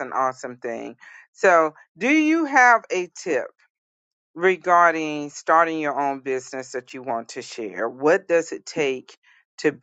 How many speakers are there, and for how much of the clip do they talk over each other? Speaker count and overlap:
1, no overlap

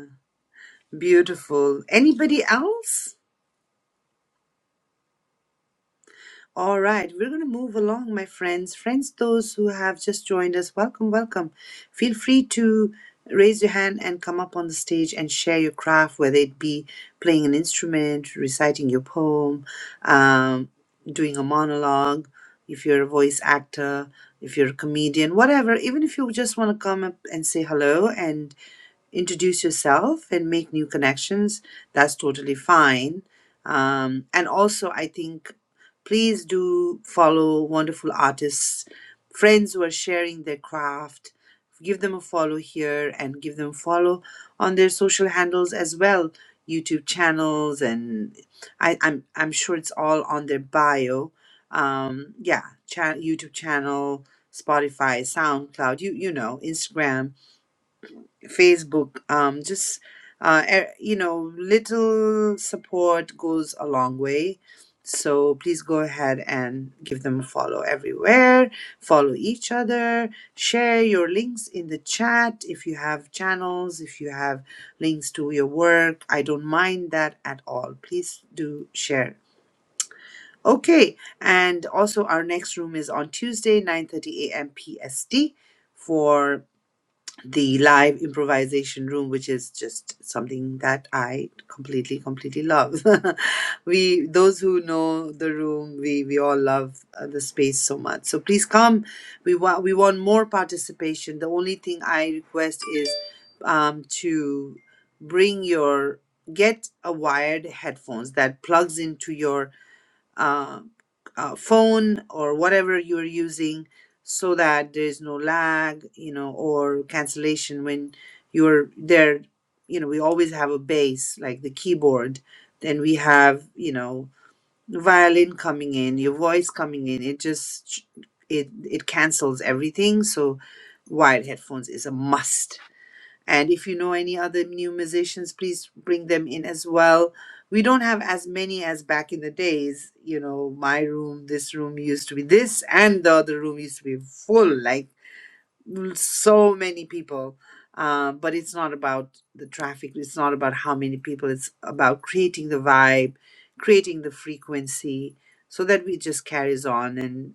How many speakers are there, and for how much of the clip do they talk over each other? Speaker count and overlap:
1, no overlap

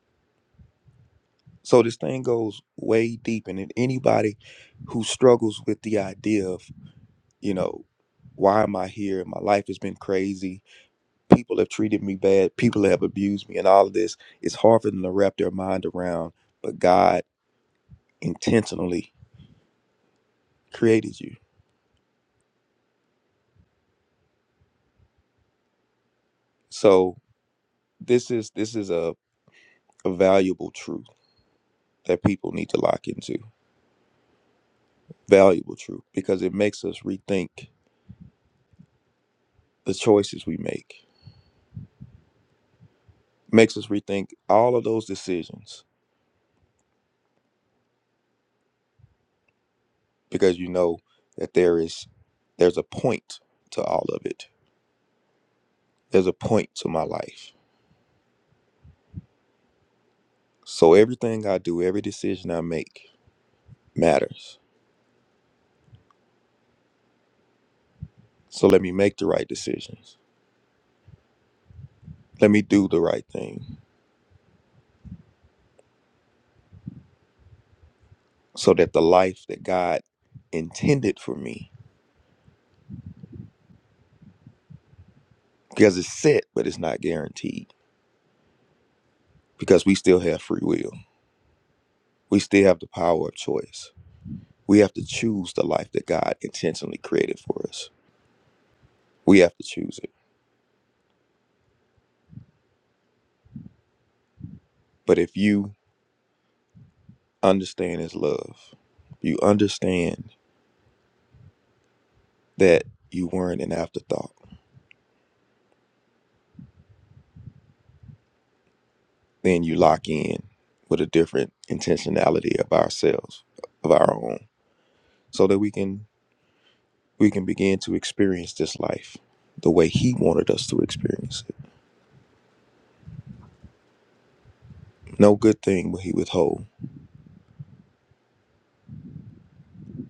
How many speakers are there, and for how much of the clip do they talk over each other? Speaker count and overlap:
1, no overlap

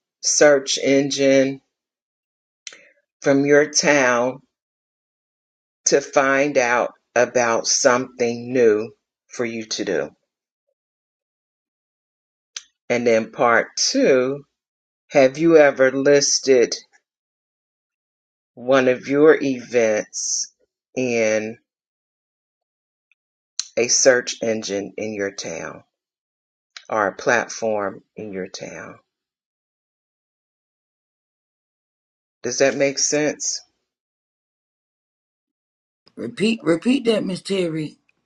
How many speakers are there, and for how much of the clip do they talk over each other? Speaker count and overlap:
2, no overlap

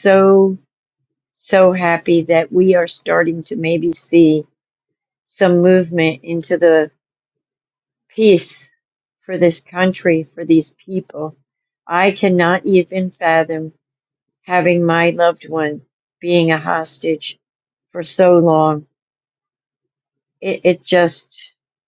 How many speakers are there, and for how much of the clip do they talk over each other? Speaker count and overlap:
1, no overlap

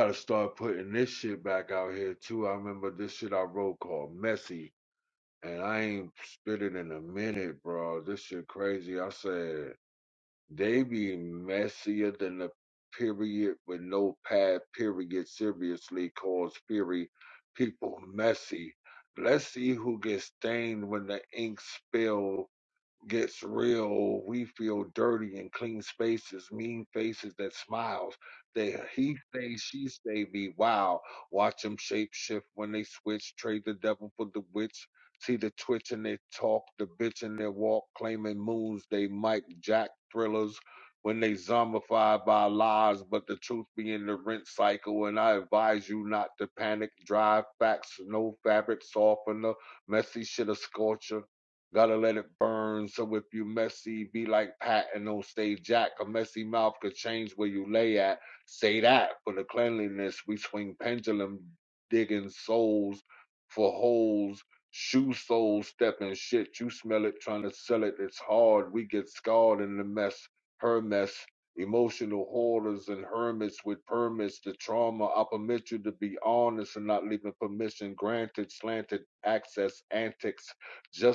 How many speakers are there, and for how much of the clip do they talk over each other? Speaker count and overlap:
1, no overlap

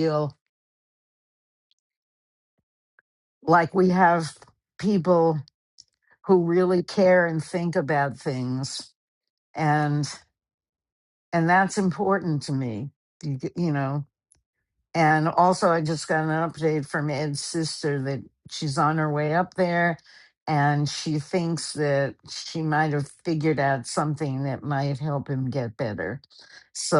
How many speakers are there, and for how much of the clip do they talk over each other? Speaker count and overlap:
1, no overlap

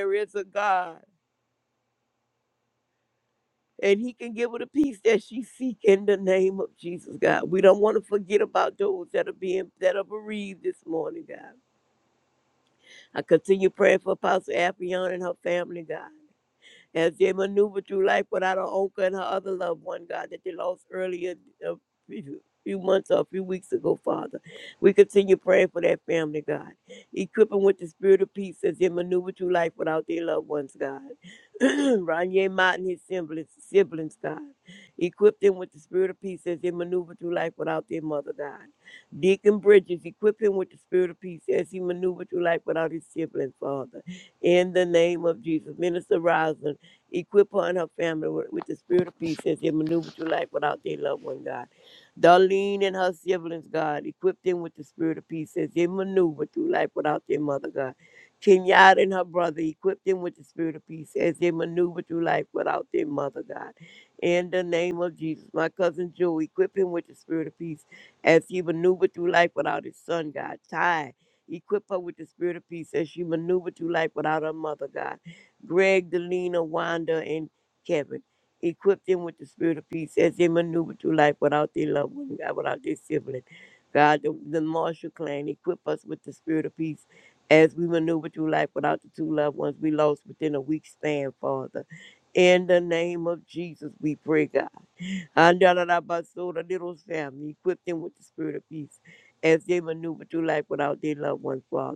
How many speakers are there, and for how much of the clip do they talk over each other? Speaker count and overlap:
1, no overlap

